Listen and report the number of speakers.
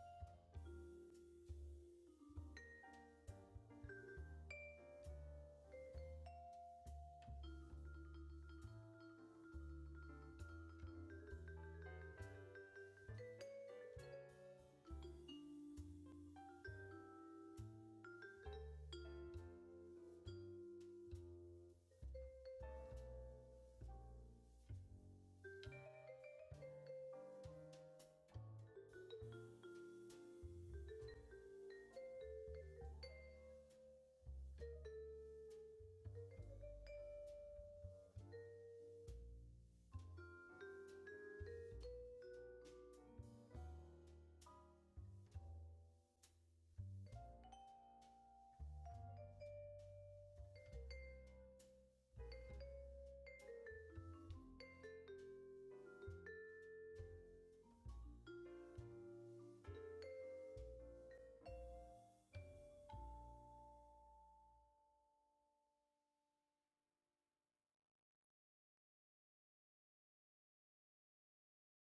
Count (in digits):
0